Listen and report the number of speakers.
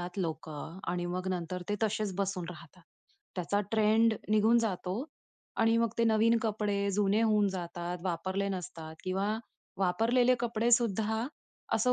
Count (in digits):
1